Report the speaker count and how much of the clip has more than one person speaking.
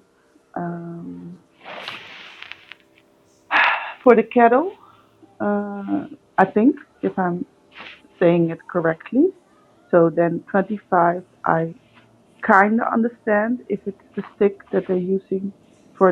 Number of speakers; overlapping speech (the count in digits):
1, no overlap